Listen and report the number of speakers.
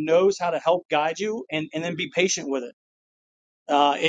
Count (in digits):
1